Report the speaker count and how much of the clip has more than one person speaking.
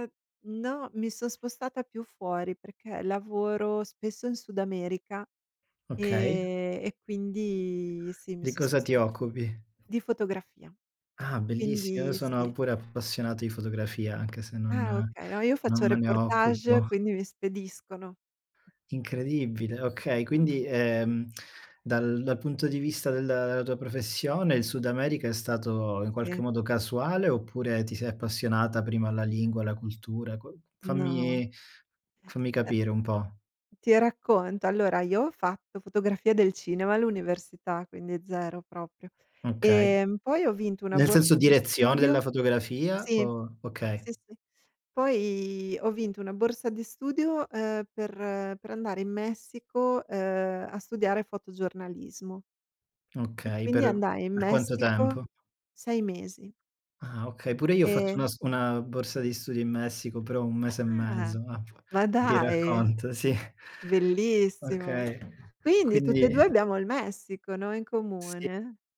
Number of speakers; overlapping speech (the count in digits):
2, about 14%